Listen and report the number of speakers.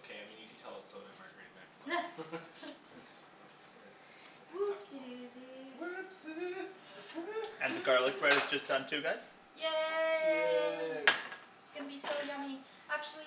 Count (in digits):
4